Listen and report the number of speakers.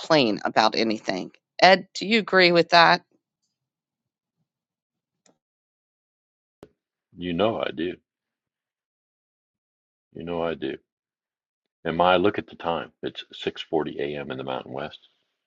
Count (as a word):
two